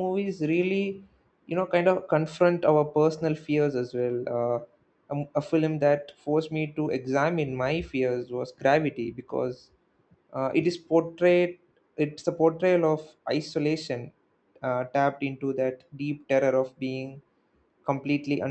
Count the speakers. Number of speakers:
one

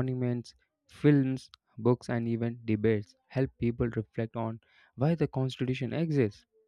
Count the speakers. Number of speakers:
one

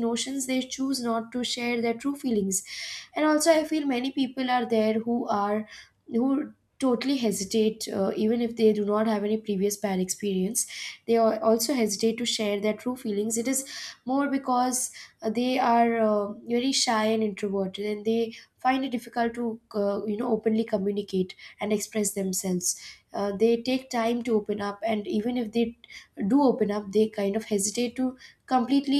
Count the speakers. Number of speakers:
one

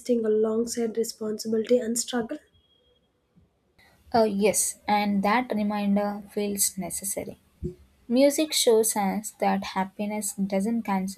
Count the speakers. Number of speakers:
two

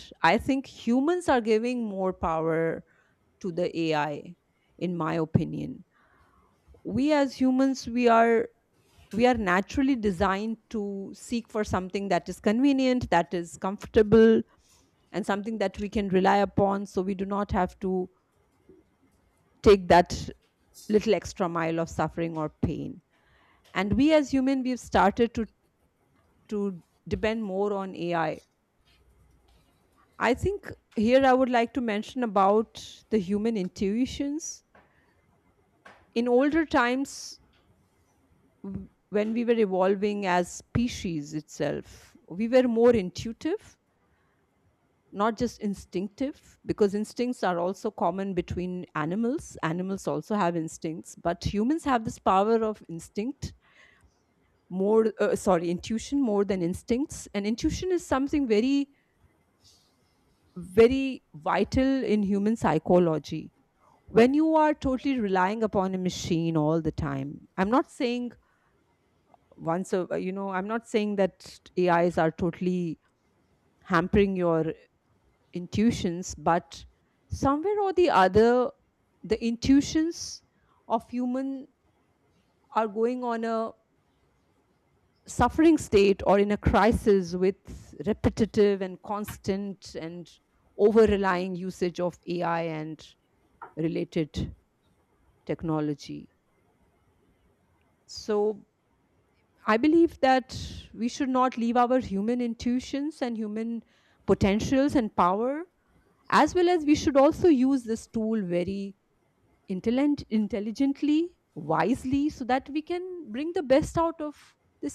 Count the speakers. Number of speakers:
one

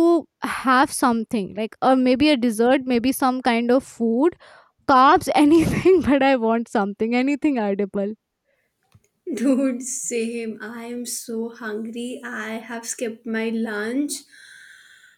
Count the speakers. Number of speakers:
two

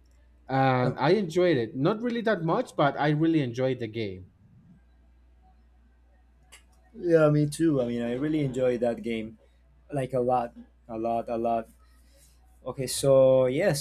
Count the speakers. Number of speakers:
two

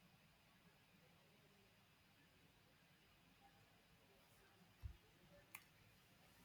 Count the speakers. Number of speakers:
zero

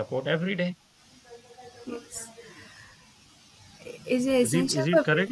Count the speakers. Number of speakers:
two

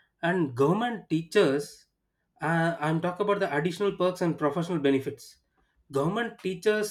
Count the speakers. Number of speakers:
one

